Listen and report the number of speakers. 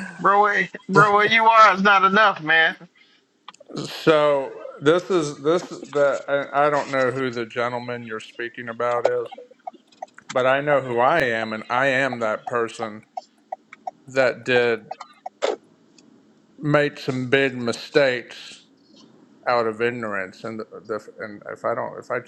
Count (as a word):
two